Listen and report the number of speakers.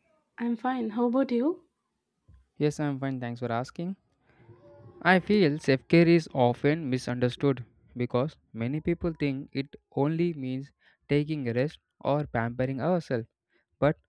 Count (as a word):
two